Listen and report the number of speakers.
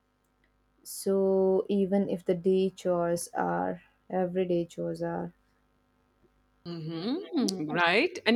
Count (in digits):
2